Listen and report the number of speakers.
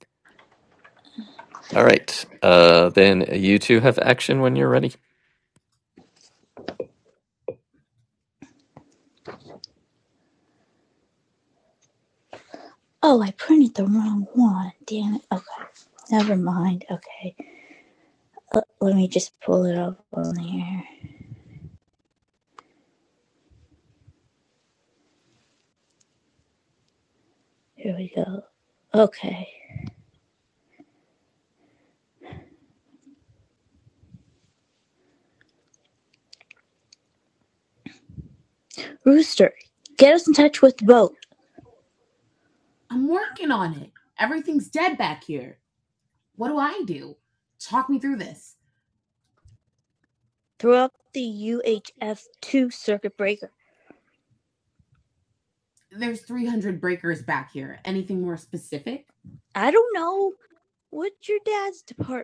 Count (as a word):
three